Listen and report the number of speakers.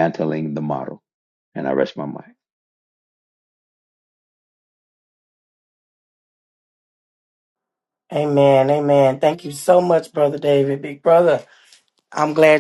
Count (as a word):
two